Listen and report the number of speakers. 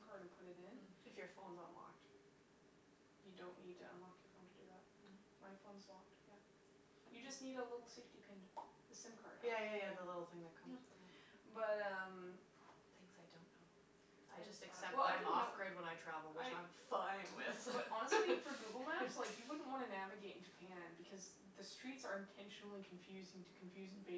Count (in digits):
2